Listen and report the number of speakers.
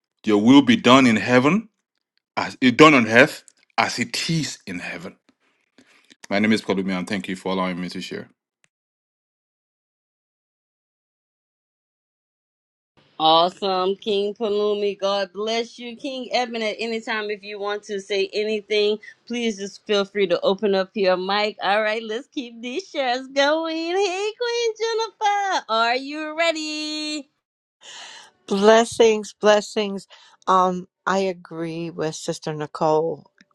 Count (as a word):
three